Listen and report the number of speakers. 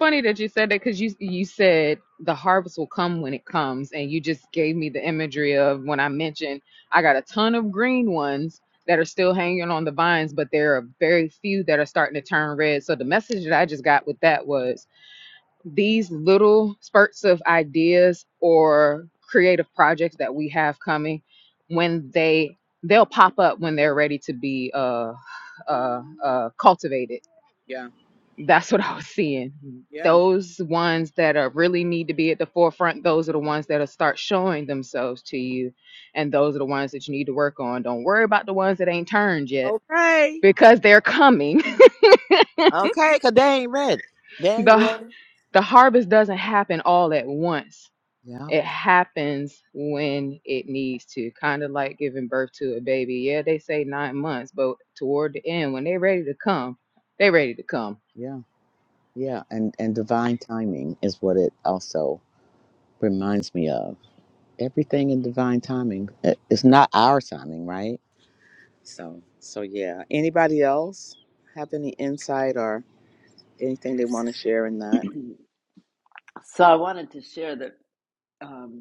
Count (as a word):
three